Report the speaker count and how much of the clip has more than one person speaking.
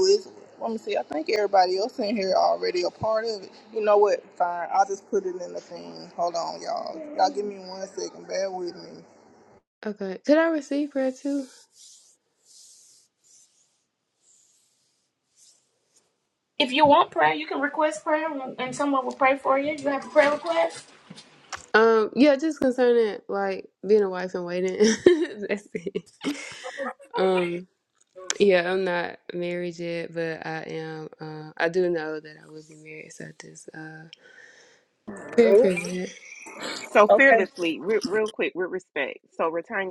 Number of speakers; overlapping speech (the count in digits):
4, about 1%